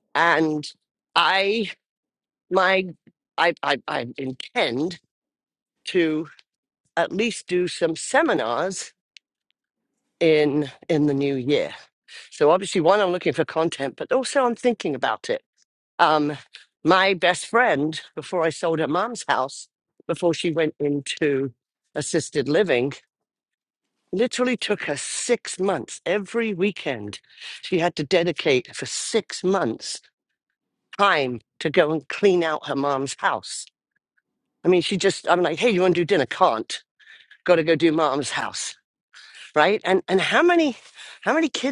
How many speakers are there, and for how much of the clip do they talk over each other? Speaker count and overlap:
one, no overlap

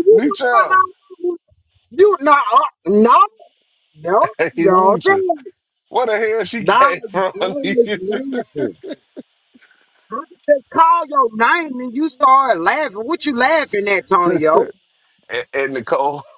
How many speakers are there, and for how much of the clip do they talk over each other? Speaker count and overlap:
two, about 16%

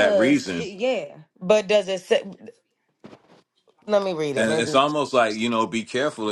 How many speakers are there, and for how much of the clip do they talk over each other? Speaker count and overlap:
three, about 17%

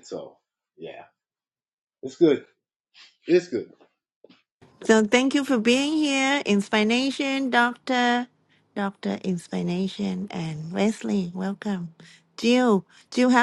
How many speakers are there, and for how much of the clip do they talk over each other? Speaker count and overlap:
two, no overlap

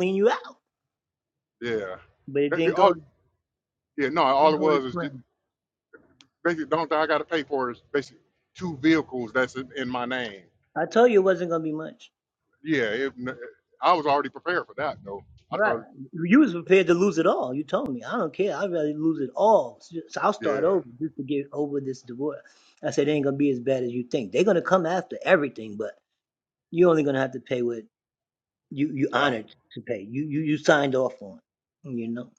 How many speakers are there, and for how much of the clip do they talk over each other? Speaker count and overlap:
two, about 6%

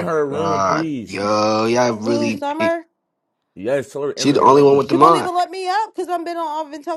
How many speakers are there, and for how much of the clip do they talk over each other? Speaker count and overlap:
three, about 42%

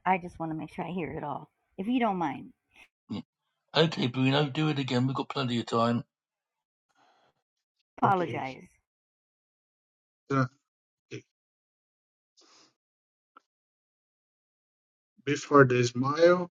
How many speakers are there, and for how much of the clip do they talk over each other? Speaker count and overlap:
three, about 2%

